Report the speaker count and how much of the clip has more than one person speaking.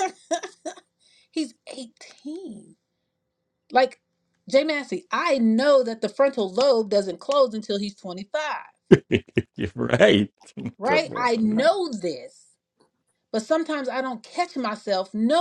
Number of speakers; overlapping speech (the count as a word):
two, about 5%